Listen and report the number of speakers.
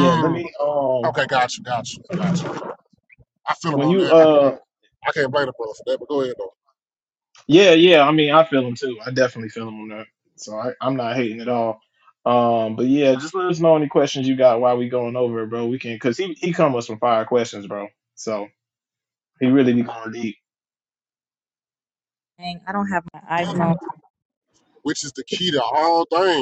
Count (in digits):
3